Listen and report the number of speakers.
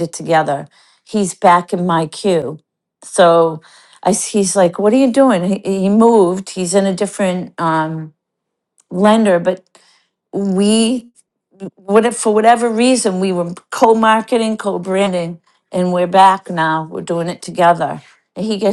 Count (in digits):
1